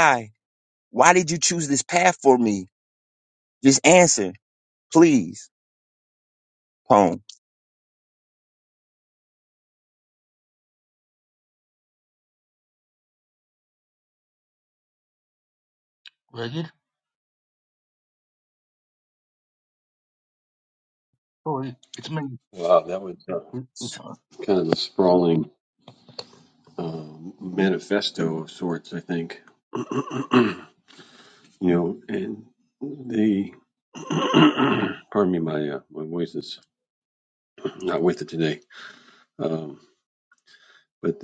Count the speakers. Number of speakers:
3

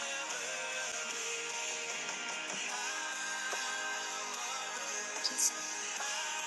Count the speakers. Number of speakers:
0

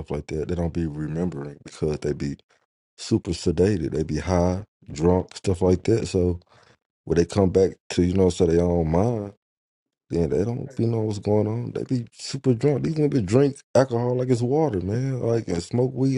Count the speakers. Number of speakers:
1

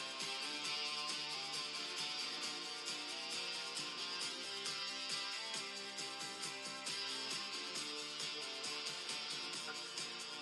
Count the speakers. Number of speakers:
0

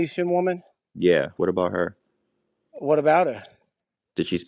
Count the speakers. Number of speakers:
2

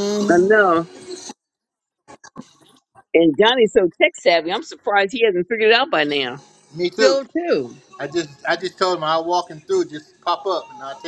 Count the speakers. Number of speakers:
3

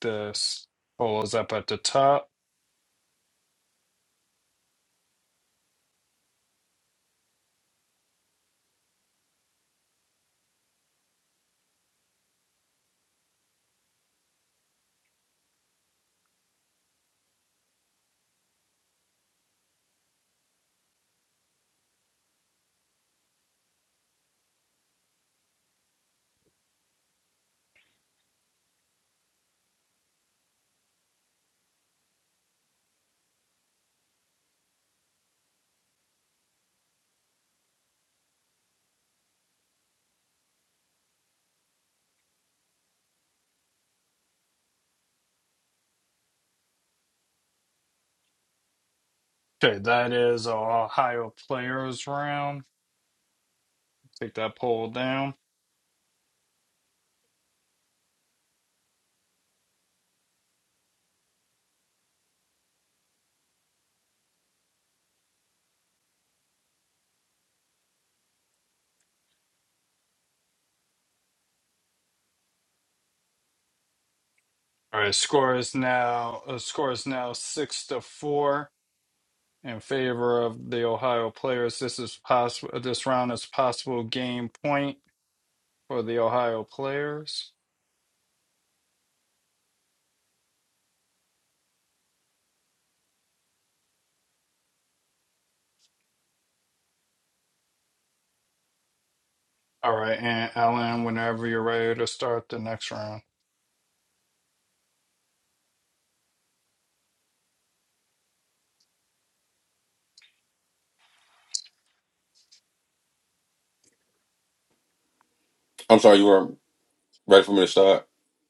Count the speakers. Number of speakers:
2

